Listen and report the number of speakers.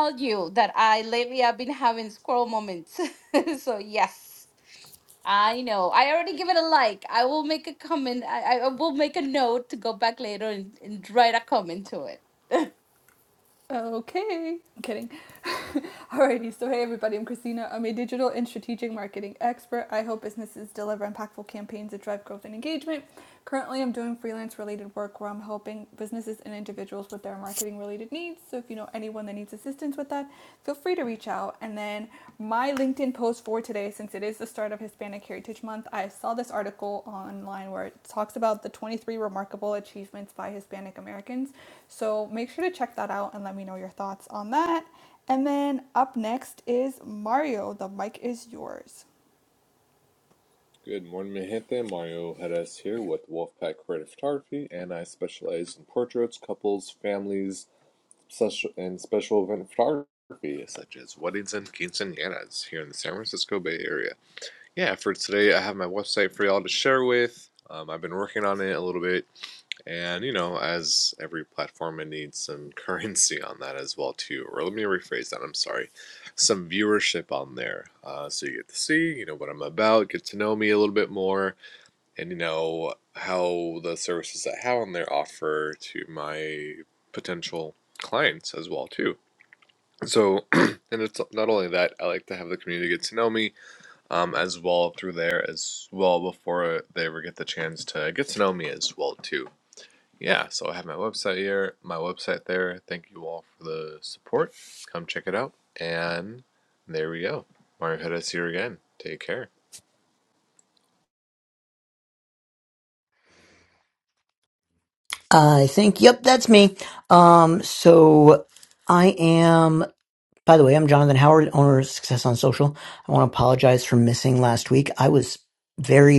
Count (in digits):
4